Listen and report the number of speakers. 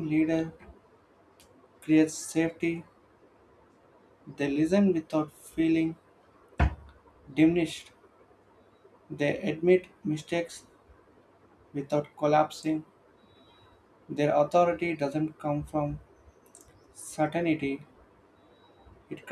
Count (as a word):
one